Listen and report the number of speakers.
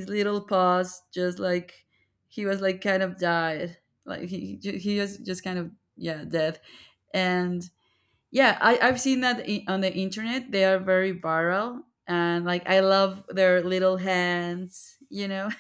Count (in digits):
1